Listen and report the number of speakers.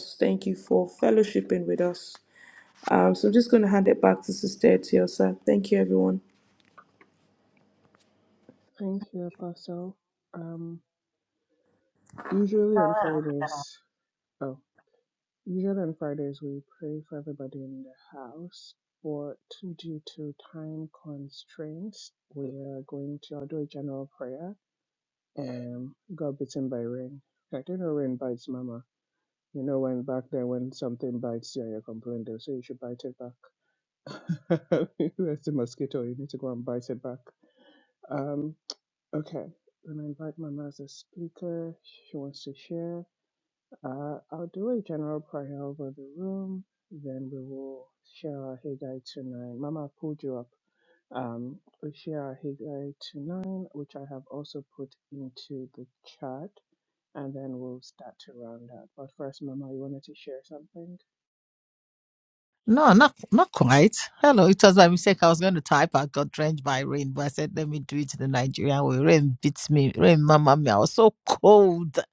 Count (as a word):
three